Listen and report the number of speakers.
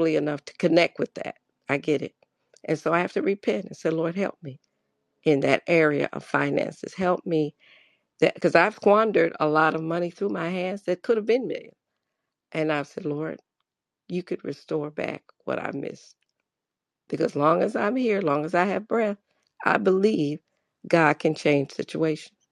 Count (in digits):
1